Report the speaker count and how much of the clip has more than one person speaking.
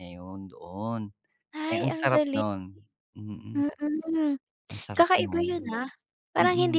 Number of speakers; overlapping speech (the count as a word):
two, about 26%